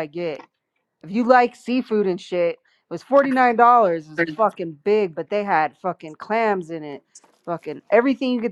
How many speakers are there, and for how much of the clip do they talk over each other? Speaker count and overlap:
1, no overlap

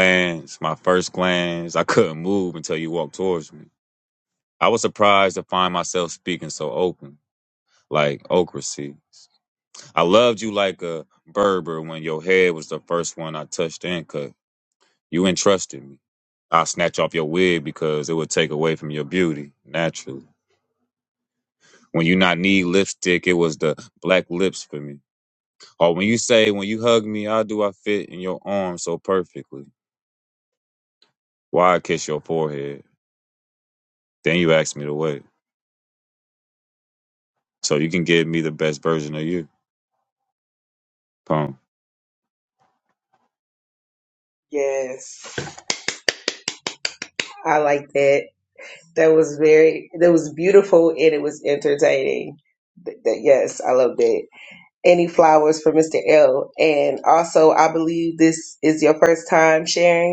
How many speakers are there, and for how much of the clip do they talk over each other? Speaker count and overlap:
2, no overlap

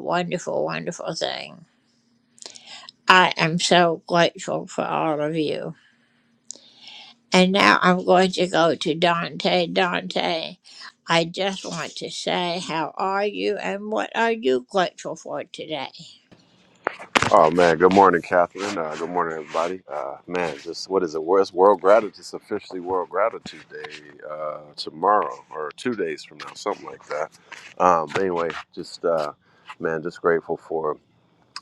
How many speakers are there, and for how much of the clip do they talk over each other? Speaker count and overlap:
2, no overlap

